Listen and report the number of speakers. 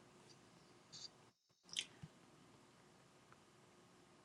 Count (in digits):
0